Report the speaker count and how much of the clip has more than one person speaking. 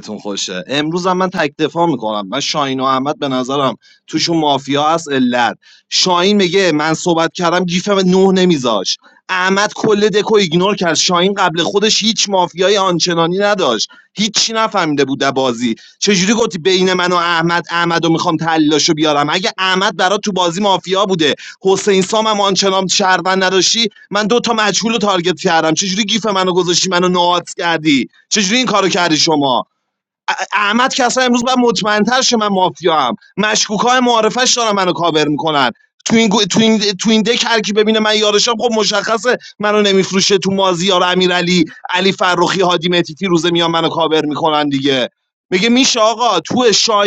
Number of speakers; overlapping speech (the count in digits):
1, no overlap